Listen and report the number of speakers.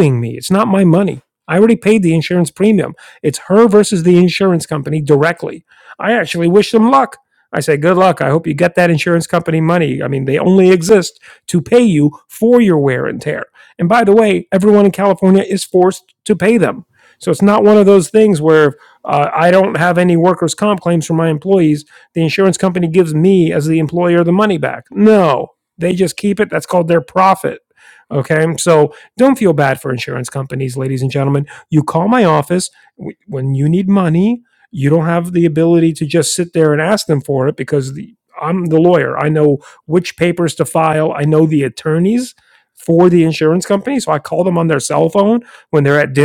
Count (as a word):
one